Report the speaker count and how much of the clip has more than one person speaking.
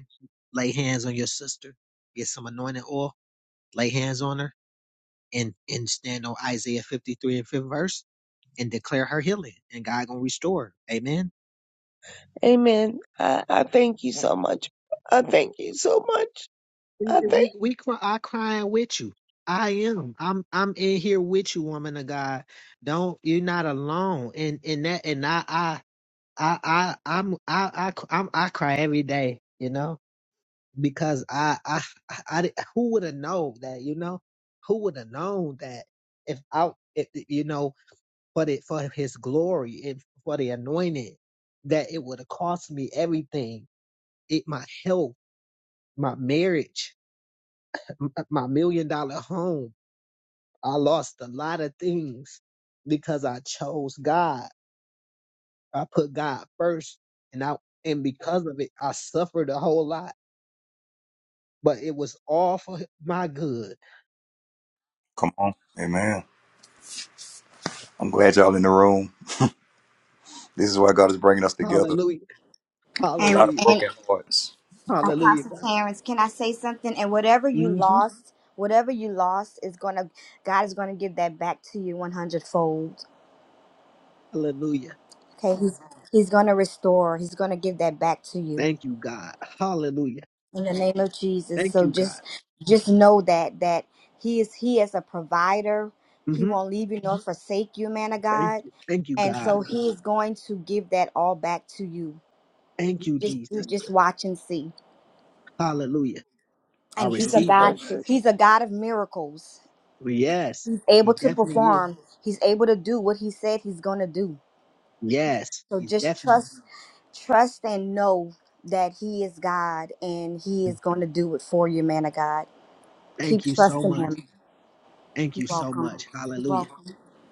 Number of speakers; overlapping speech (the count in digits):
4, about 7%